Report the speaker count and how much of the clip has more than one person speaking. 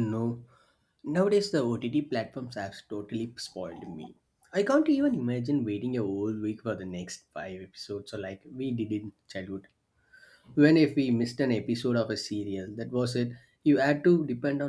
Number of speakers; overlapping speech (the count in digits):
1, no overlap